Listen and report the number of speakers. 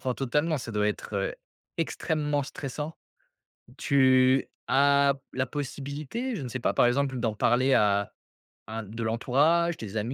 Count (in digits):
1